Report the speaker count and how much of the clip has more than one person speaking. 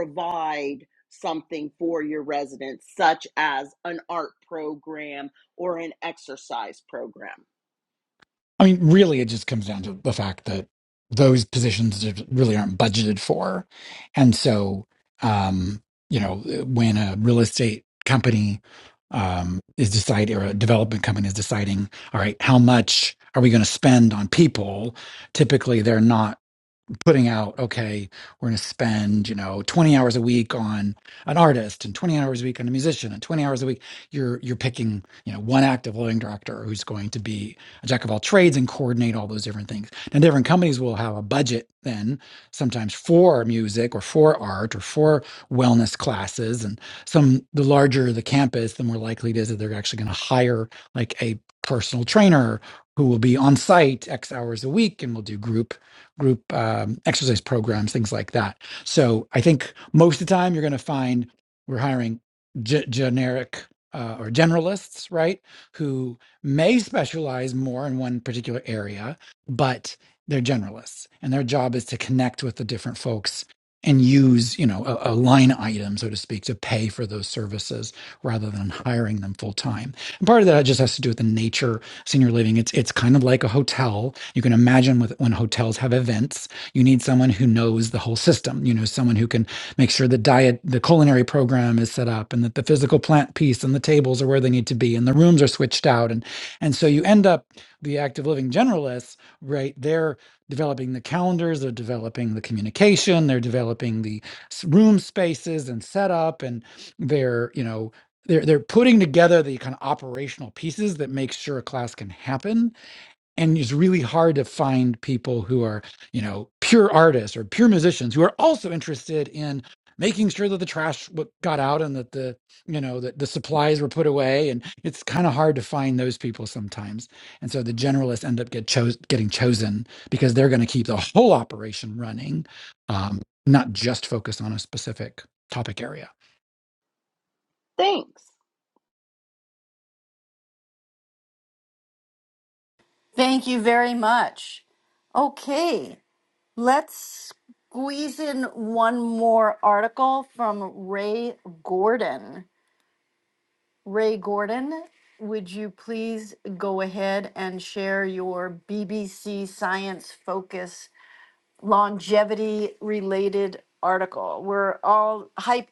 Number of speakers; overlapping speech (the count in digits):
3, no overlap